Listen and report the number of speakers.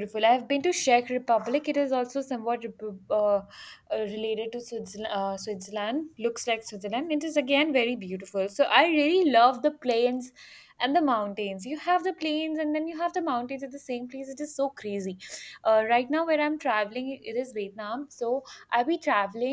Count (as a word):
one